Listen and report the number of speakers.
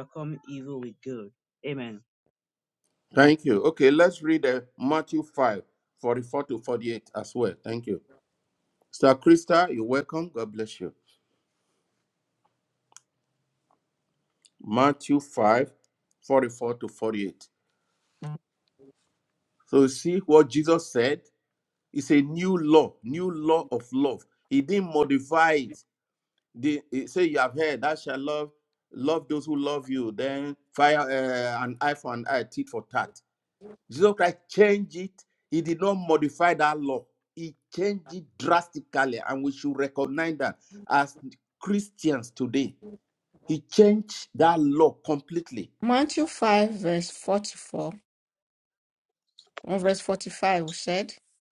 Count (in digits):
3